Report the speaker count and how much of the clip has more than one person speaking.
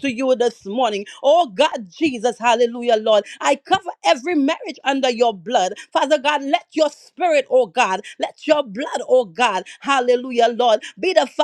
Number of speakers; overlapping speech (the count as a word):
one, no overlap